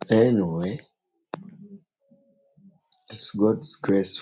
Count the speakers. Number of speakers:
one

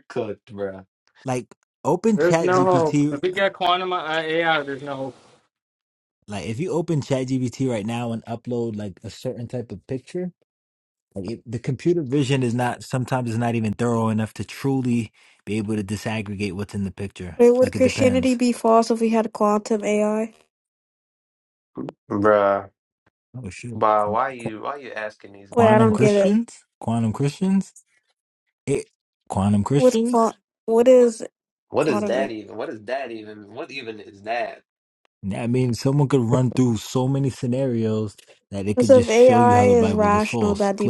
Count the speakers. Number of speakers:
four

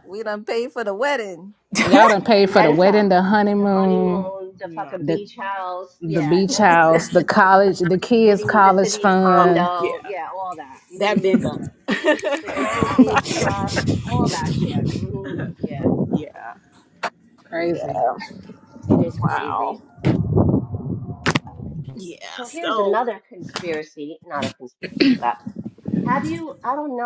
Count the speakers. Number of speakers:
four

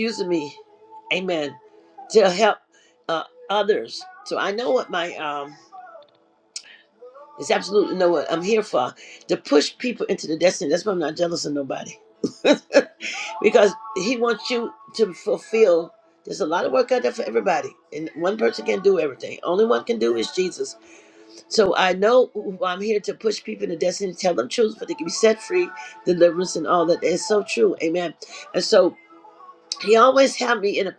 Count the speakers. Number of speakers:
one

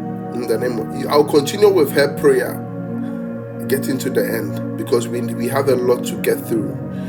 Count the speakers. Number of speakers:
one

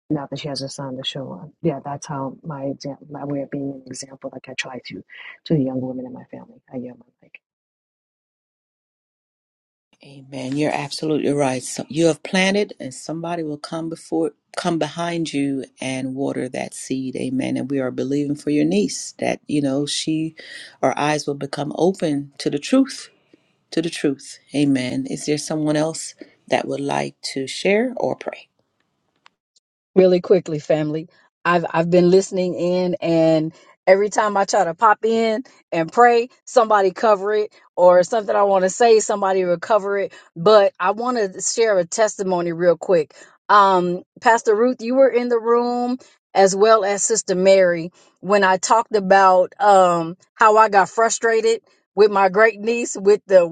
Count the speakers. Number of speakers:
three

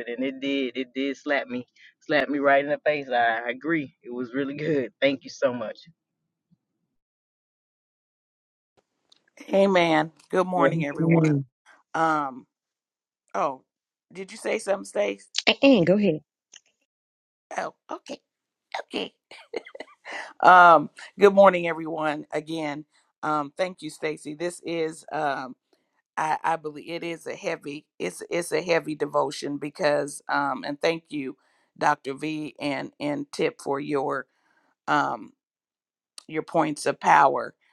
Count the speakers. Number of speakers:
three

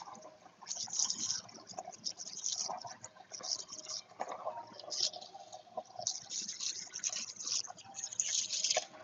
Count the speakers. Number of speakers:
zero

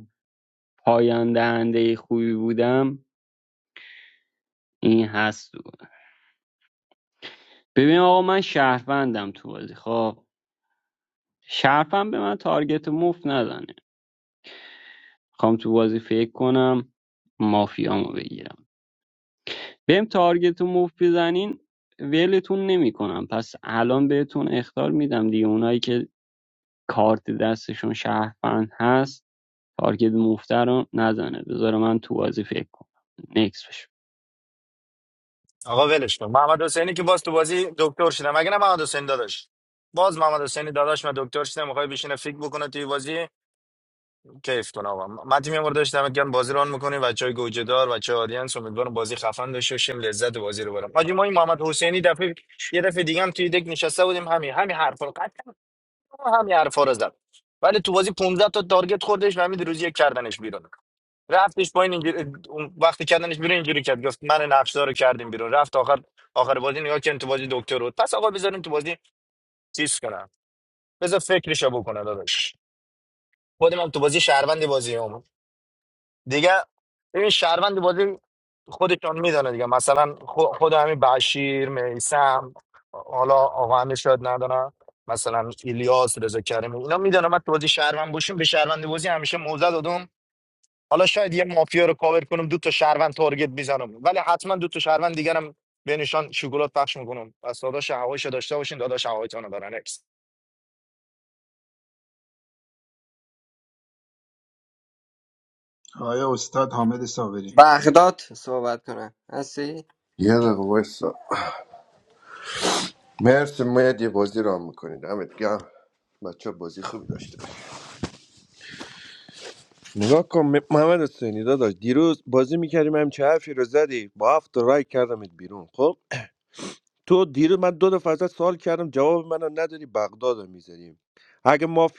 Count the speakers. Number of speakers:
five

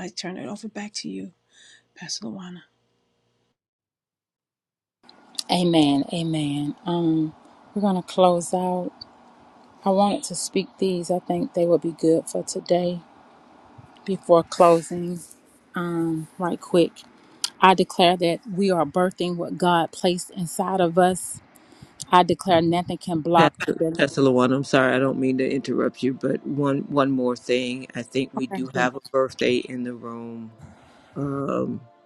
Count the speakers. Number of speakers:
three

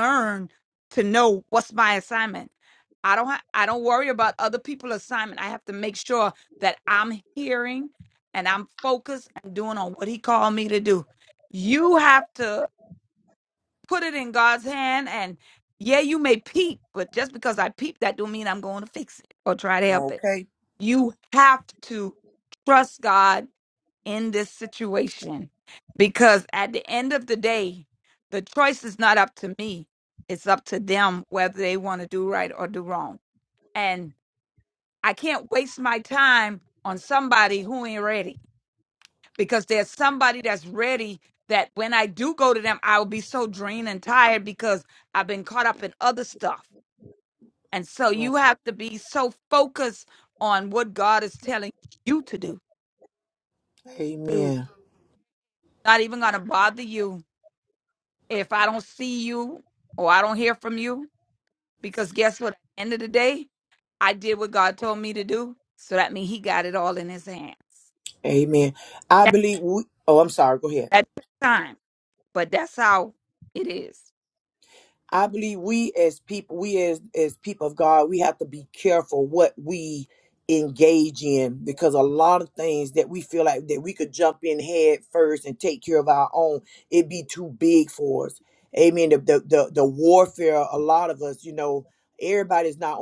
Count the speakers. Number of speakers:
two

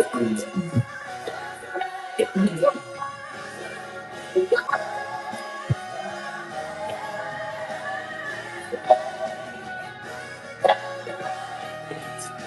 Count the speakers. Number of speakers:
zero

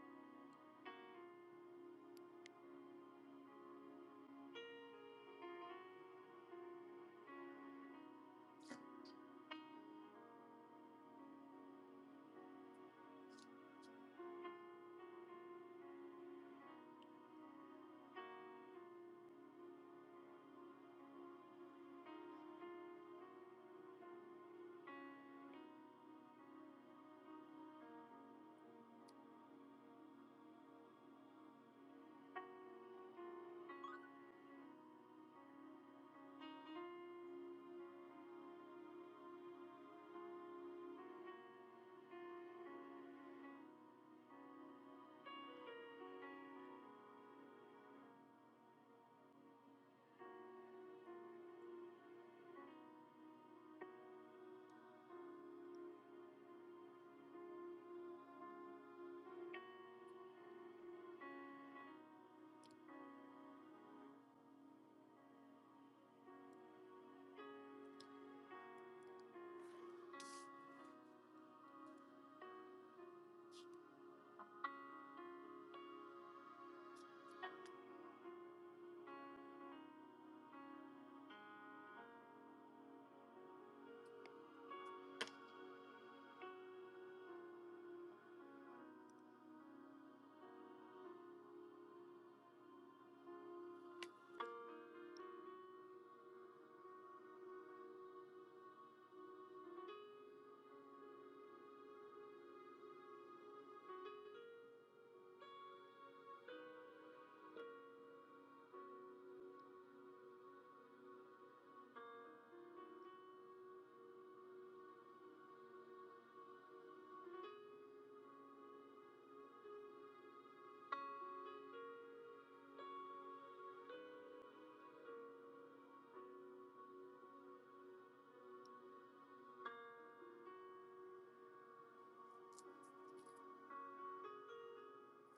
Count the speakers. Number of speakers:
zero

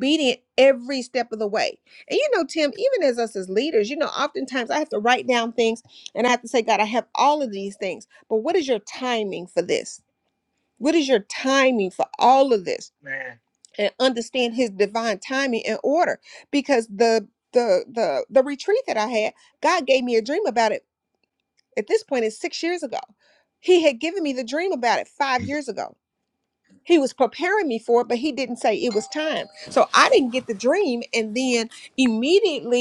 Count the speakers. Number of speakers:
one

